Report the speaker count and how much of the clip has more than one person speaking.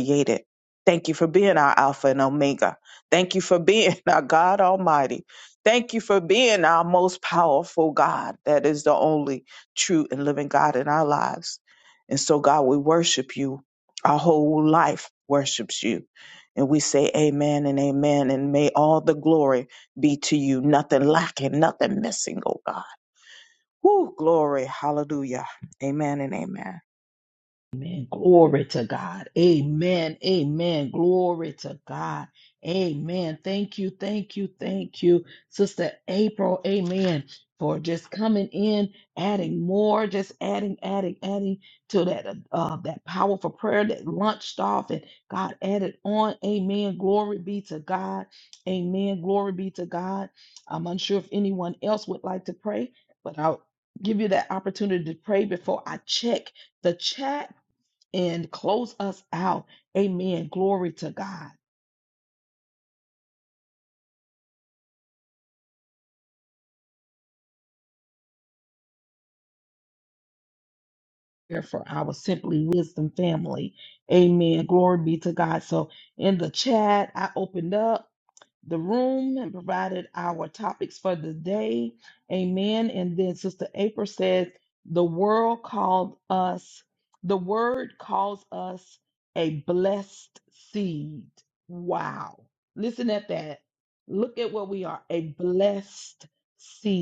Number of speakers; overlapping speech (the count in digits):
2, no overlap